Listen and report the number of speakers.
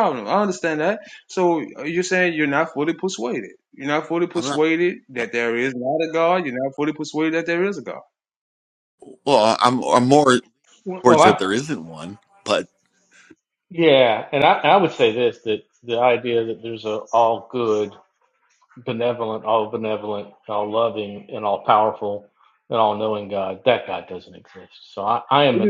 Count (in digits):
3